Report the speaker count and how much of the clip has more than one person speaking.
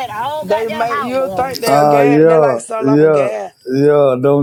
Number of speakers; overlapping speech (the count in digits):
3, about 55%